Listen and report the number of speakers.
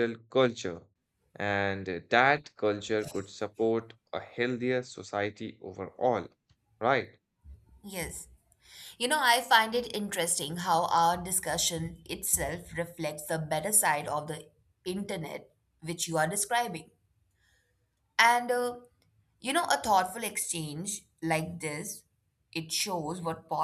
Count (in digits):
2